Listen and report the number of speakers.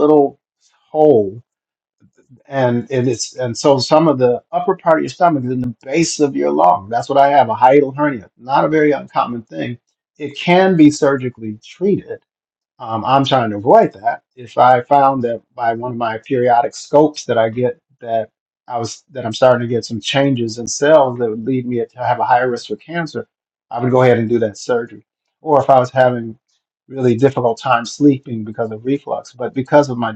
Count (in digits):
1